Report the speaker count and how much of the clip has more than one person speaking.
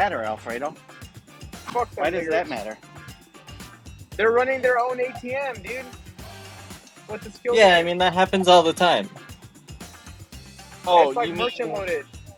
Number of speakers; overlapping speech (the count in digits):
3, about 15%